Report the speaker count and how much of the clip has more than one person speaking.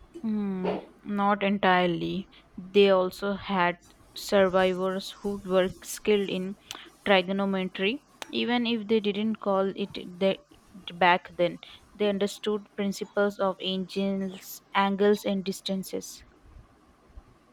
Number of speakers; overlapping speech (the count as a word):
one, no overlap